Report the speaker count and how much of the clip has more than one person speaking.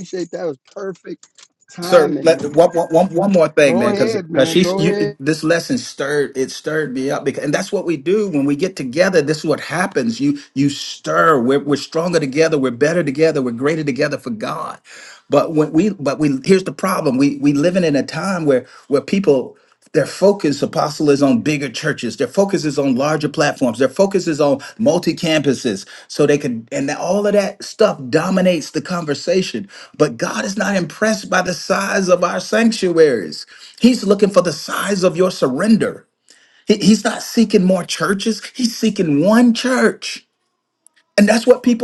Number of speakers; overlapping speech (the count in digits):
2, about 6%